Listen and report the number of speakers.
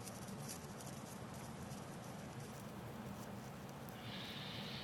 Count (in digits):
0